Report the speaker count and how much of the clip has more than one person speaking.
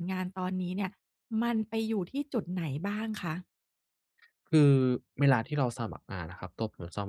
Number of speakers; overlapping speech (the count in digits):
2, no overlap